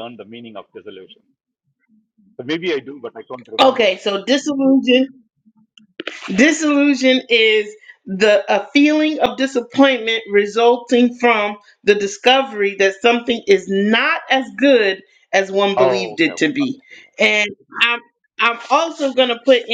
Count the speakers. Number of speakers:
2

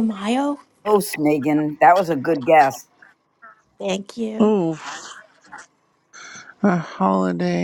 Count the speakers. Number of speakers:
3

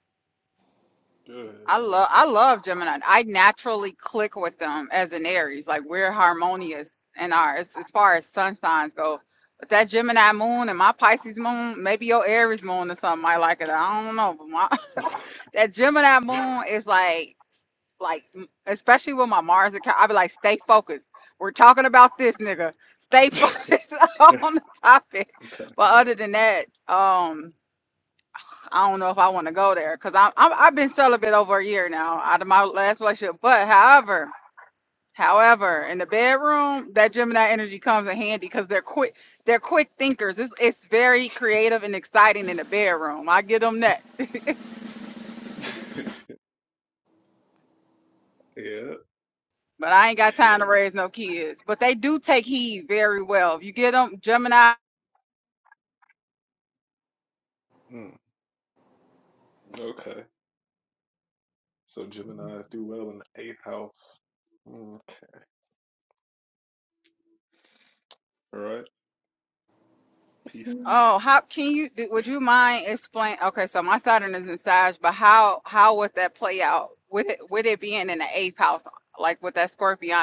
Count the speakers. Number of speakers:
2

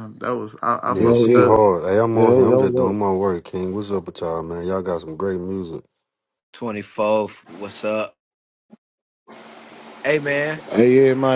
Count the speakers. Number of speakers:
4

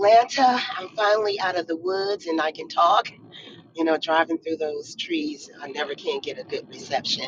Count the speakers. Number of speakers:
1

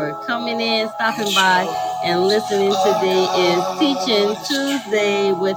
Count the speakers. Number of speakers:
1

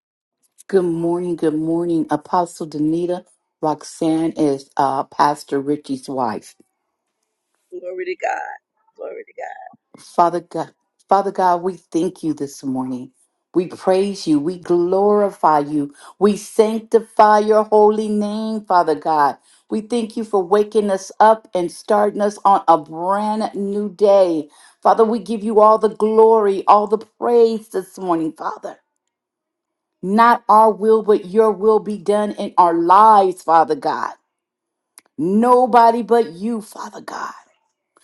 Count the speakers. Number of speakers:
2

